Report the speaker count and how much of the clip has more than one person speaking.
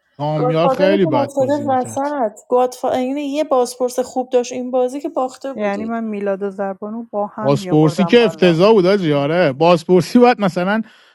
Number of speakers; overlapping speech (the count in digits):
3, about 27%